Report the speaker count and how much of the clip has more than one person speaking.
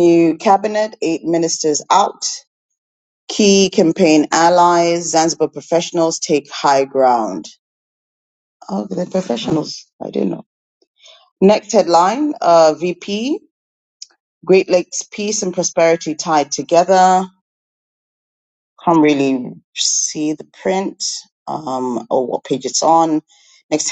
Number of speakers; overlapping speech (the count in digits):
1, no overlap